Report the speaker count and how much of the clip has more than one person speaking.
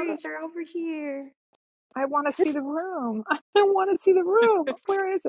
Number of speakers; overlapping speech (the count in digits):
2, about 4%